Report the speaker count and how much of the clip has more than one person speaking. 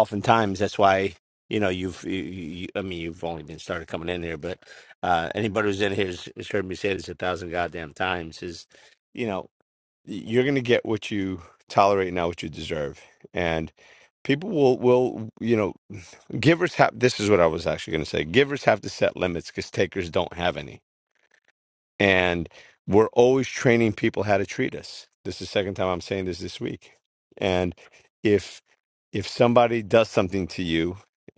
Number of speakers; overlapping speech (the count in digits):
1, no overlap